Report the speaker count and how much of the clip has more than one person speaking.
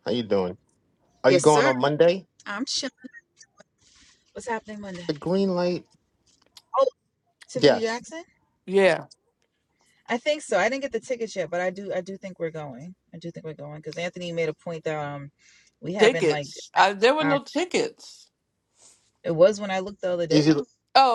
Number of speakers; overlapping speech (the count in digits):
3, about 8%